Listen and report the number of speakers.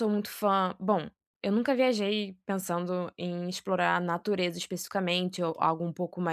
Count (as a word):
one